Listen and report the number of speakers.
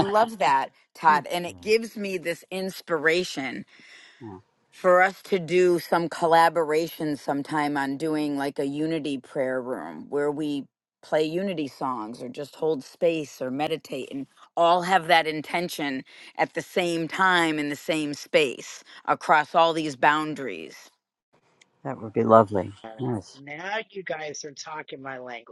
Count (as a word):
three